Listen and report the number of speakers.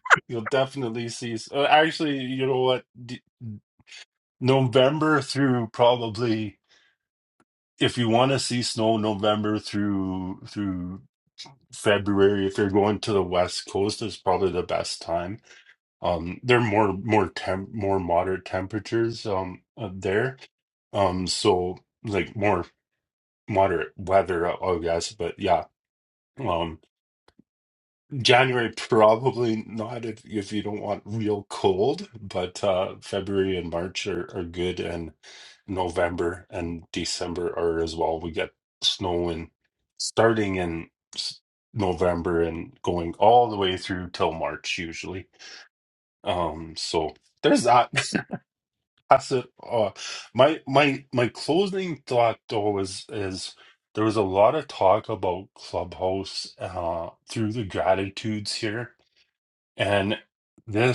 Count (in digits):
1